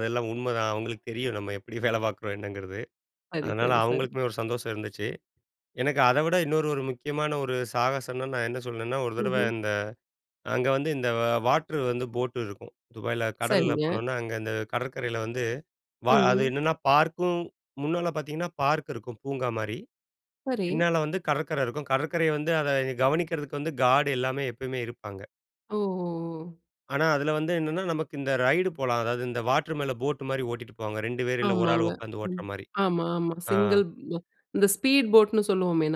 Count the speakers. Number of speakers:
2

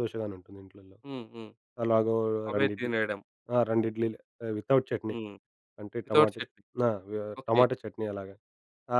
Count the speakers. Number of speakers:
2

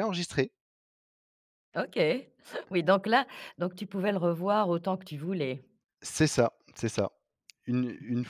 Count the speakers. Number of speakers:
2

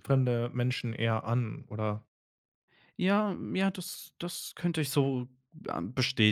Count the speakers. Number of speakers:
2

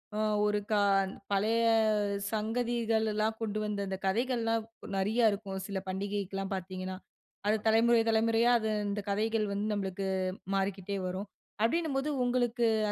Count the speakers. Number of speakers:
1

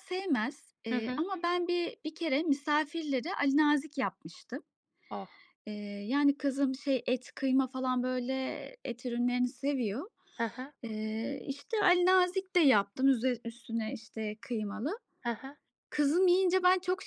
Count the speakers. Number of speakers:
2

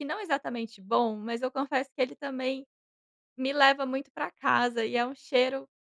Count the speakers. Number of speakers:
1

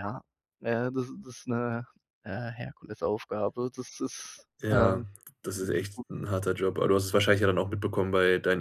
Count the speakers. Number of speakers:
2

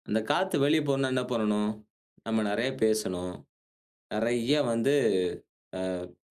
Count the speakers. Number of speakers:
1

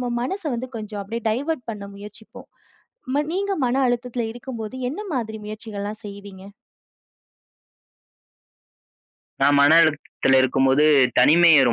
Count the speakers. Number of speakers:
2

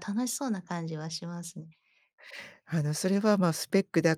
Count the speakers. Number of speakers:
2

